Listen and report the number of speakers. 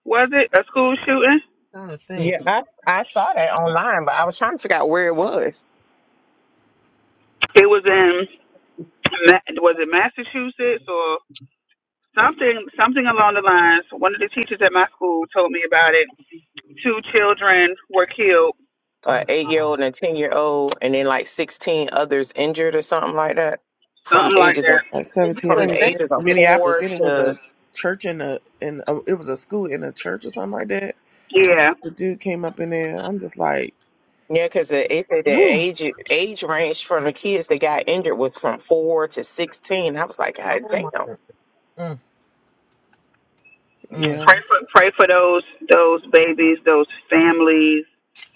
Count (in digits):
4